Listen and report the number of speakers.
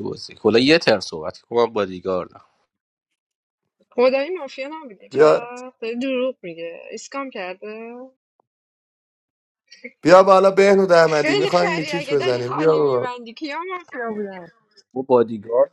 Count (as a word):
three